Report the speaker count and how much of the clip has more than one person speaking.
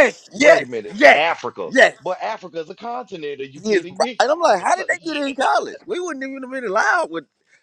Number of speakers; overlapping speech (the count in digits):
2, about 26%